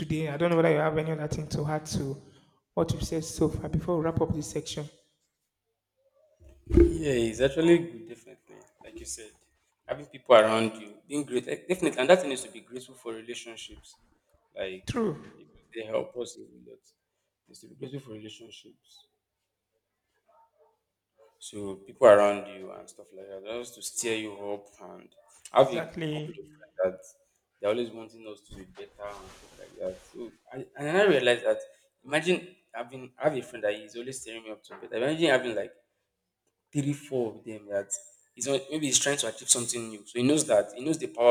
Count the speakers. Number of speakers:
2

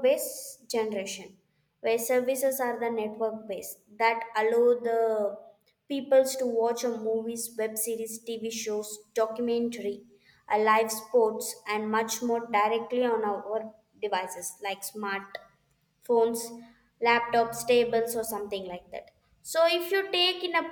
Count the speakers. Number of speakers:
1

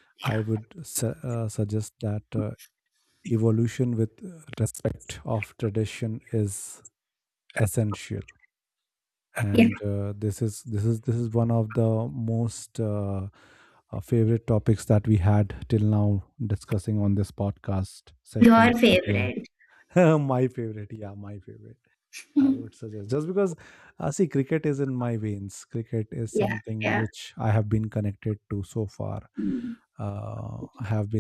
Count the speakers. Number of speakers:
2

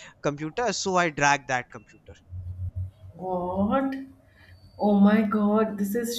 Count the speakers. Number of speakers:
2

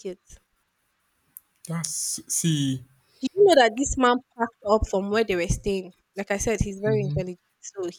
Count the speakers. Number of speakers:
2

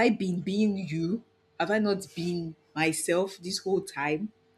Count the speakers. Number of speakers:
1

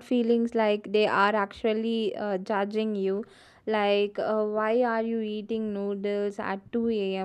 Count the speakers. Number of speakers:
1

